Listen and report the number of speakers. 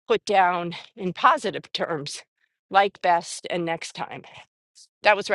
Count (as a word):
one